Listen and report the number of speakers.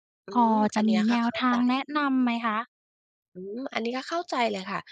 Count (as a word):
two